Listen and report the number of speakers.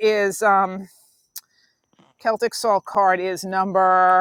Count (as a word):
one